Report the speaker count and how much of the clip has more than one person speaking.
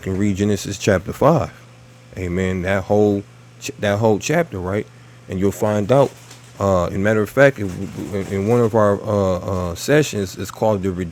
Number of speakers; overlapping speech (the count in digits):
1, no overlap